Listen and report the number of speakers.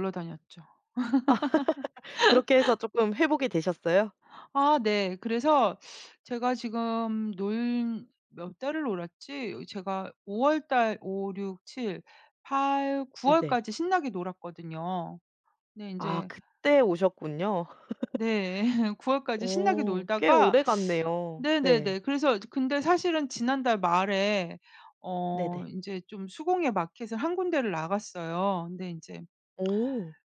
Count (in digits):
2